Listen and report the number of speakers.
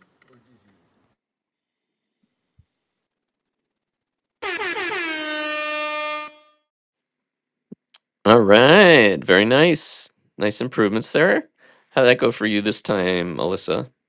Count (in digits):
1